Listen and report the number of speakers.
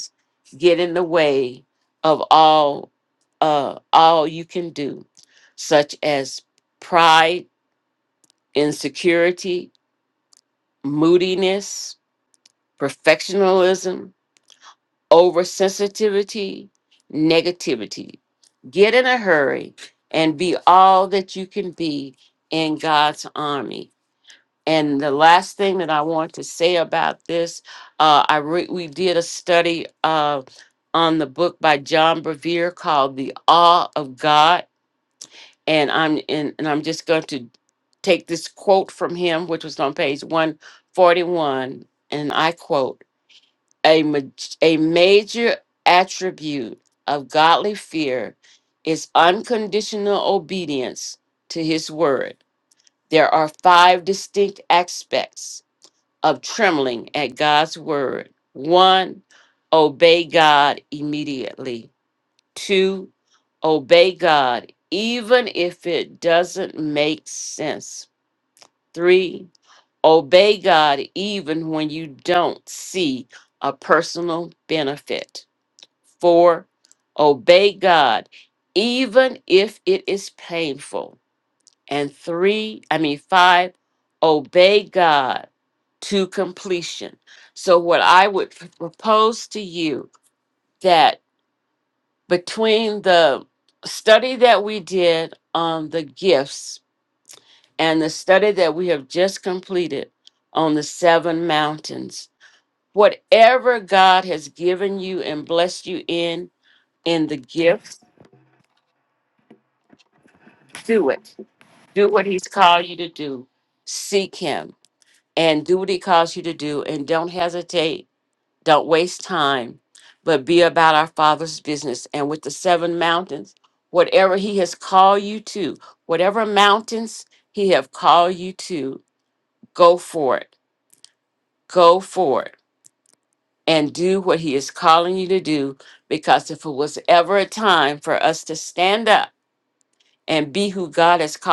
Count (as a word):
one